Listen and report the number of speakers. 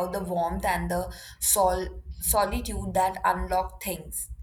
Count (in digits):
1